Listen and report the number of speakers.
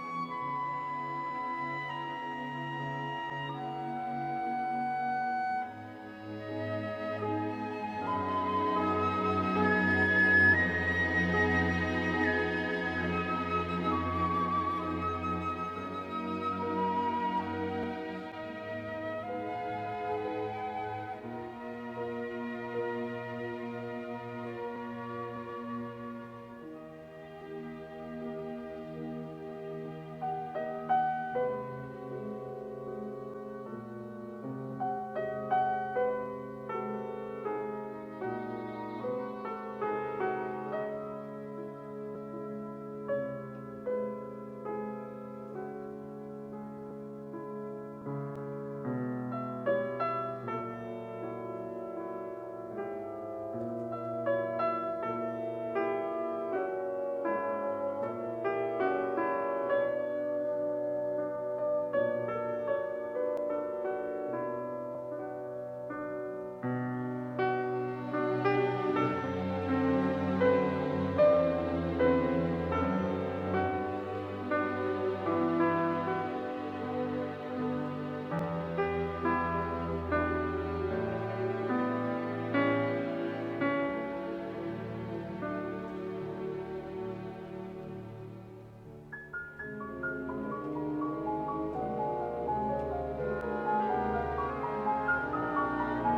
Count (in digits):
0